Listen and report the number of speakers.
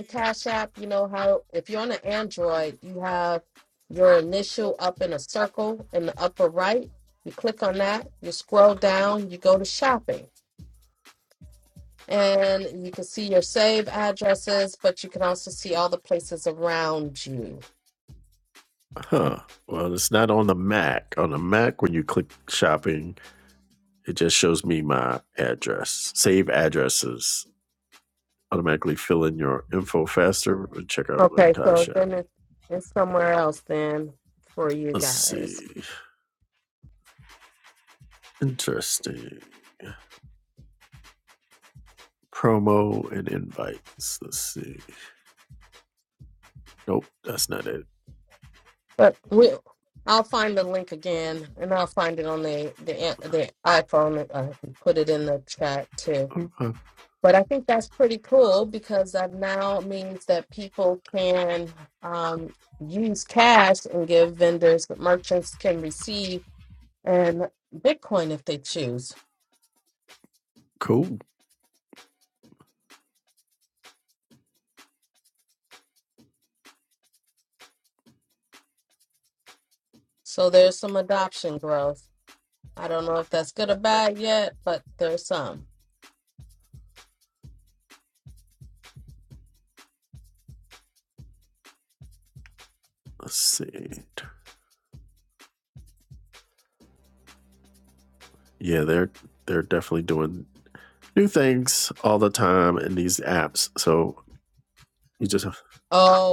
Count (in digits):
2